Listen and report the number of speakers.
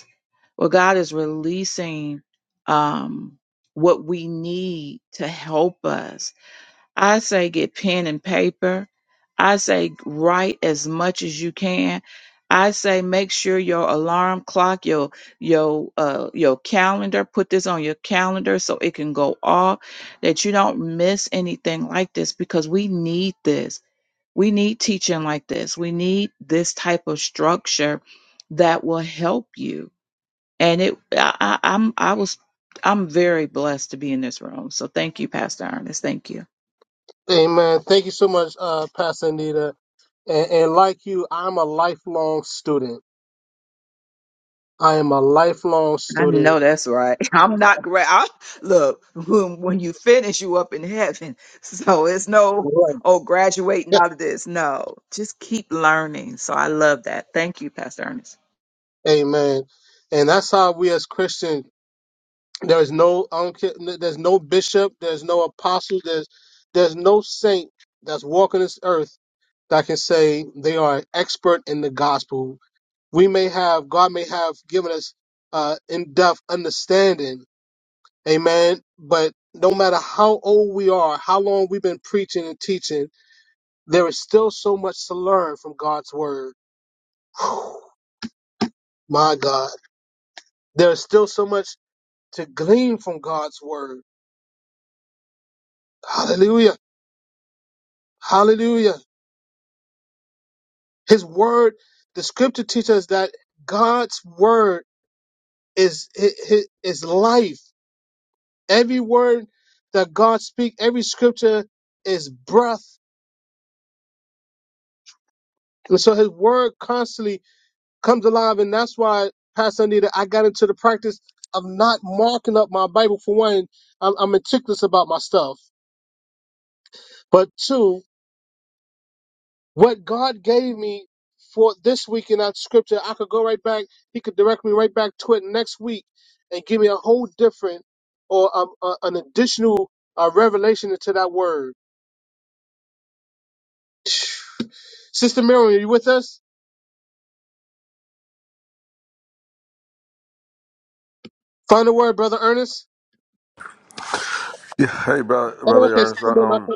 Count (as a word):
three